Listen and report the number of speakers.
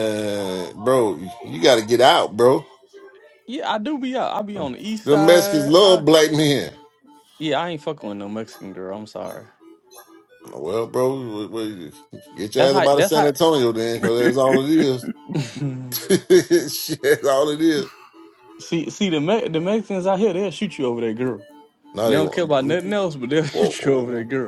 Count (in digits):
2